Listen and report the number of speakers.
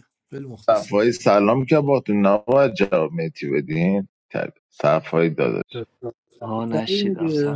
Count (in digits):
3